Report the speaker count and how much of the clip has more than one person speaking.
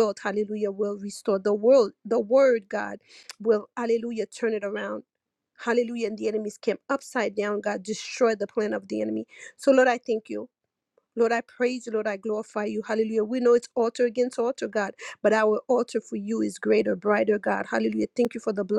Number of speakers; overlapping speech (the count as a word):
one, no overlap